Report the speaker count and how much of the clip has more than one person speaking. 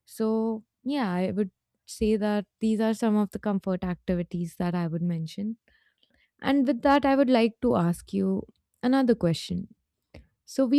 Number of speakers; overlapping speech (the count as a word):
one, no overlap